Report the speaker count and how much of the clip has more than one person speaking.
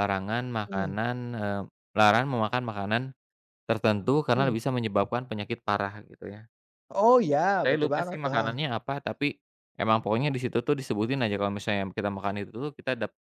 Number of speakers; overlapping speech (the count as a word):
two, about 10%